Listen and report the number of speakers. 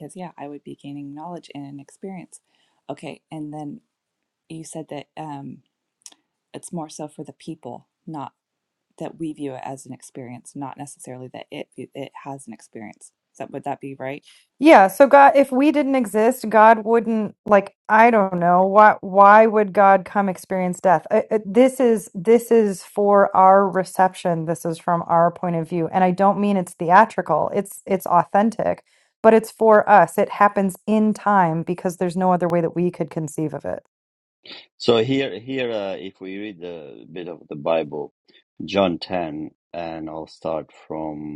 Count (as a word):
three